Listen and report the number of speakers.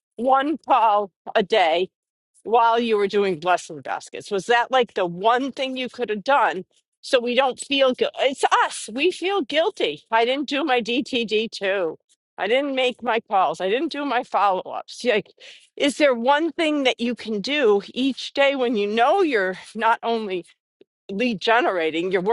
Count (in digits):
1